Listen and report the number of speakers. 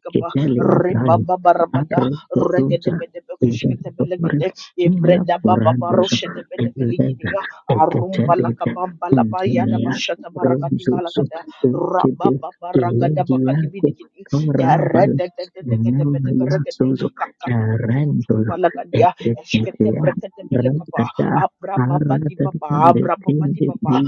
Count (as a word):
two